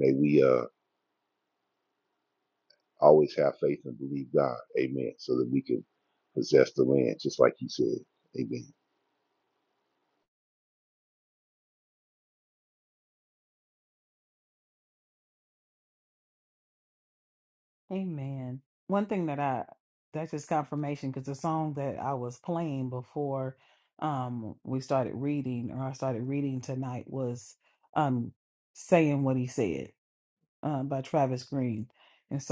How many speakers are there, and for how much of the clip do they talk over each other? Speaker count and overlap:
2, no overlap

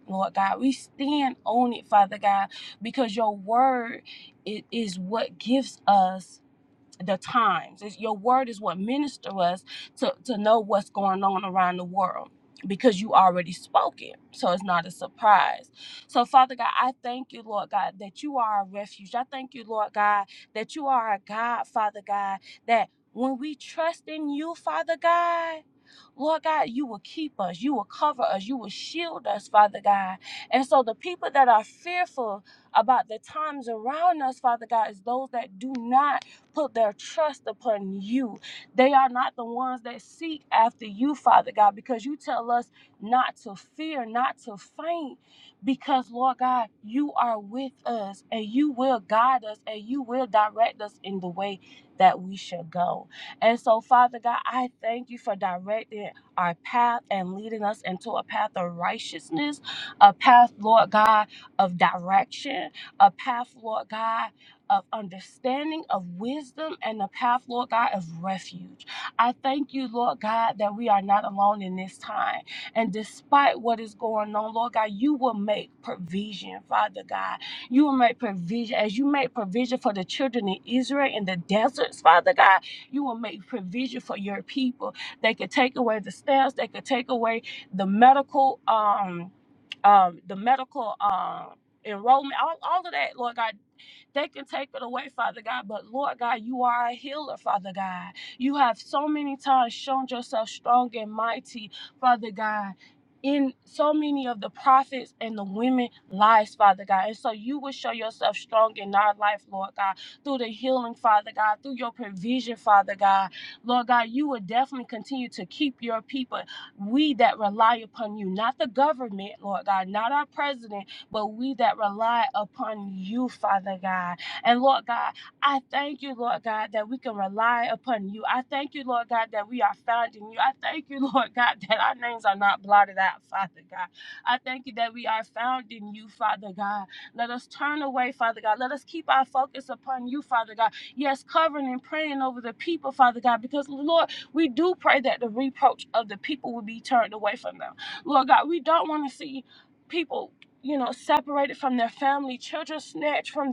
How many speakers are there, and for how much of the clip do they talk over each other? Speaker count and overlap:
1, no overlap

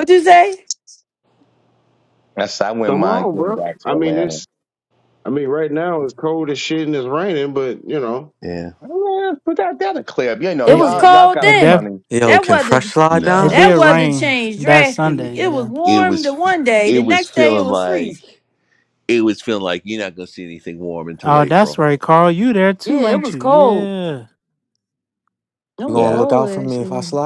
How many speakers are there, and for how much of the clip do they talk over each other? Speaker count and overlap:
6, about 38%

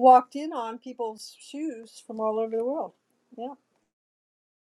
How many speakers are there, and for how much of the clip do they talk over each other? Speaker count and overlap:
1, no overlap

